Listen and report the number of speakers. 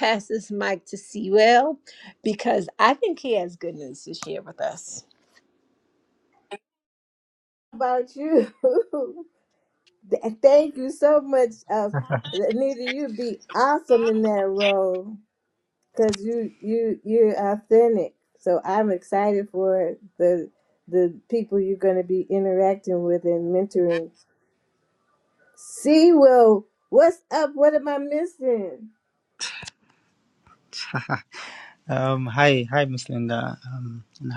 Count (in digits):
3